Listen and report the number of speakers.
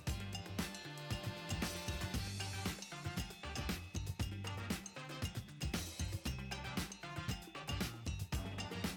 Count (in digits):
0